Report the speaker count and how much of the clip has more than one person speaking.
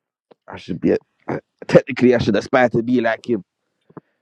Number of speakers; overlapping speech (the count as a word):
one, no overlap